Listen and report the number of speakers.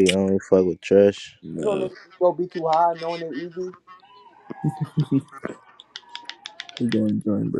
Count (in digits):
3